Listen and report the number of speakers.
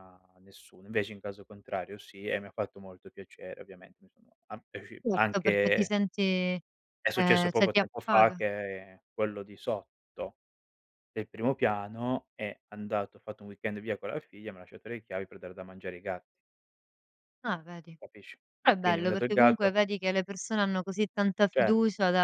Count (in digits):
2